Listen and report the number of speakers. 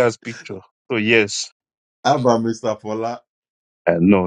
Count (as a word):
two